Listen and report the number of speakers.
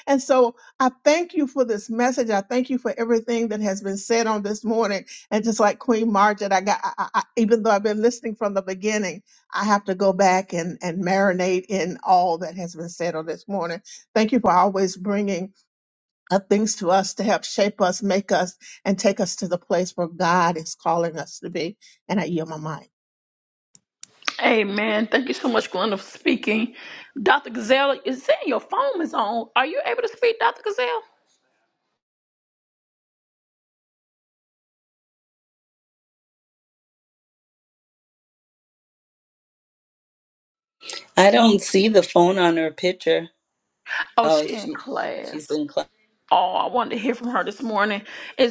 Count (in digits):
3